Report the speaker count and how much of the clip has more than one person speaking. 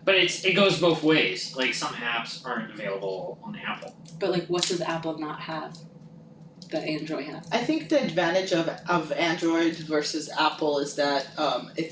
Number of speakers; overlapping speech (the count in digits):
3, no overlap